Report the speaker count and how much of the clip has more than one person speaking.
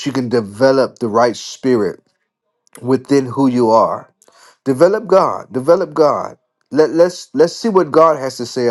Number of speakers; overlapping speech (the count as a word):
one, no overlap